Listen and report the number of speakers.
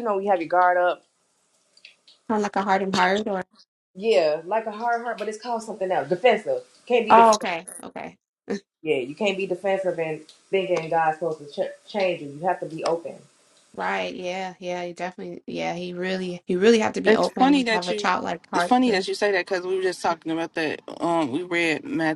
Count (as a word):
three